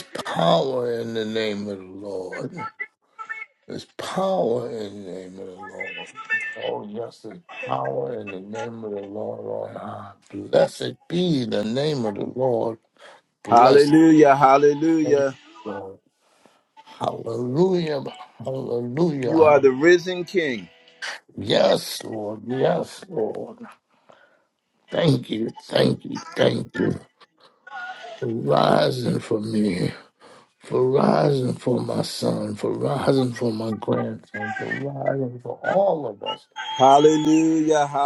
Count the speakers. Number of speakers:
two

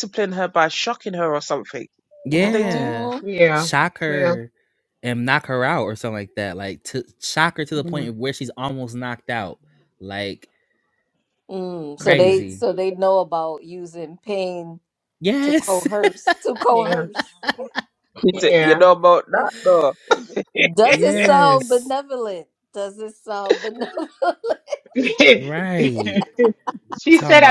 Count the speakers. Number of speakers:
four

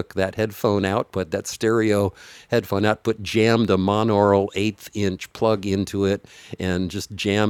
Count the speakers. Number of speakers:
one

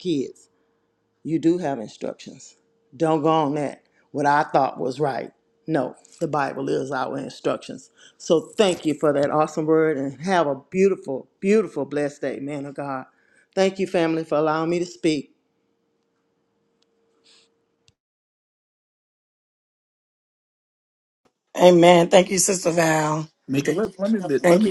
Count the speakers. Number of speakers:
three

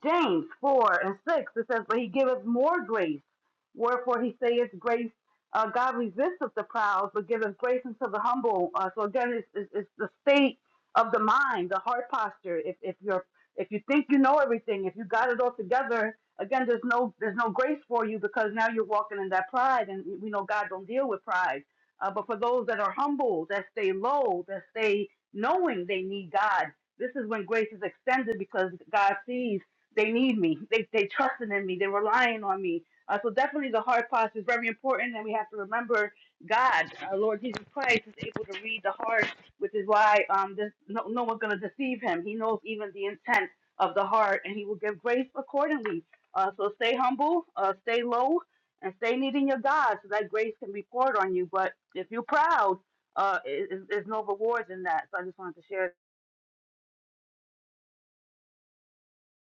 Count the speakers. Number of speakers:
one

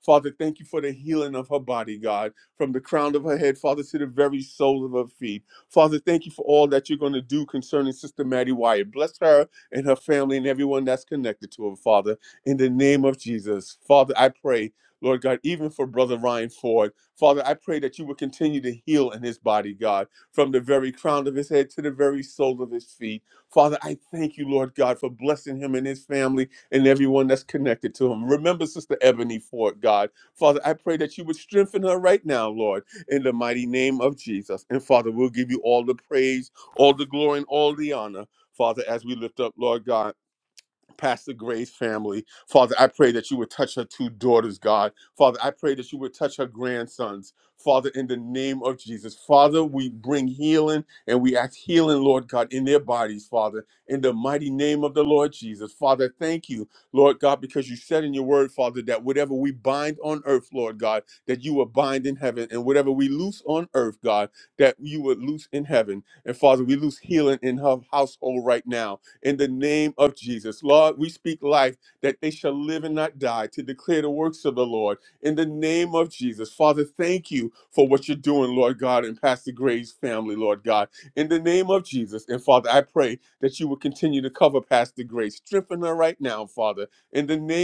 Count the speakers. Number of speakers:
one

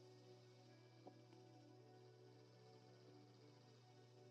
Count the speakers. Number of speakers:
zero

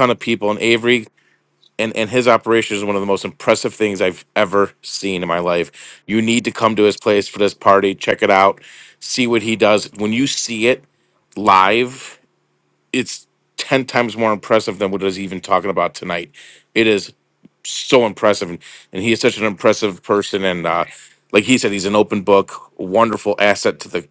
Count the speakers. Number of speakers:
one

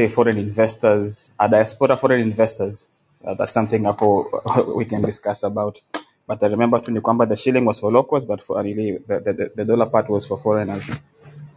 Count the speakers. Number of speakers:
one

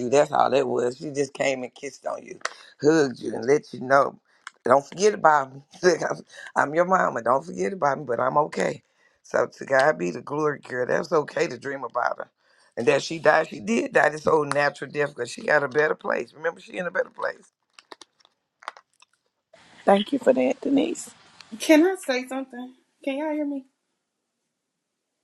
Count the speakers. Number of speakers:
three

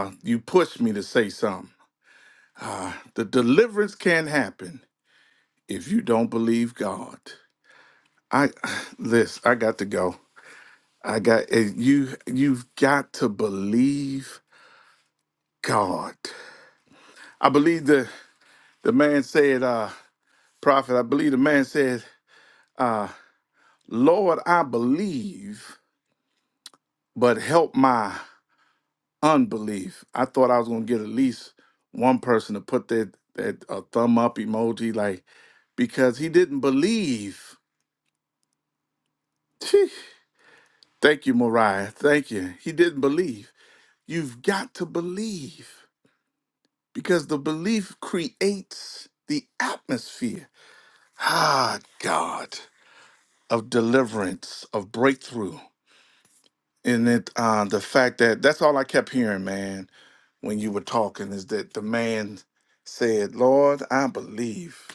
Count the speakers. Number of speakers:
one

